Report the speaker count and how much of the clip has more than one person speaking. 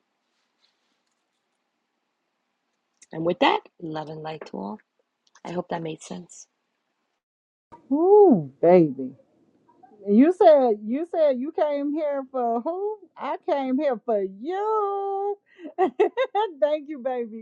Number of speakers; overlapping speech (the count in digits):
2, no overlap